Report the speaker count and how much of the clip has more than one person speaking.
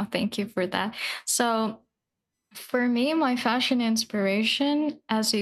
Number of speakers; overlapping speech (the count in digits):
1, no overlap